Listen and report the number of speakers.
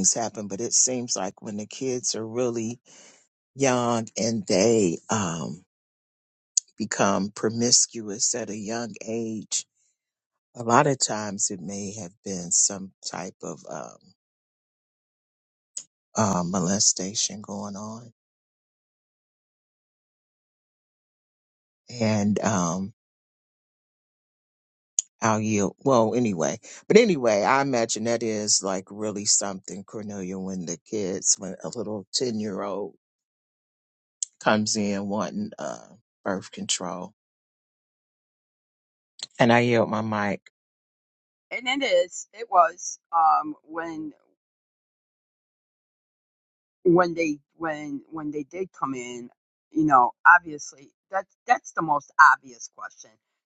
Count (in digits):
2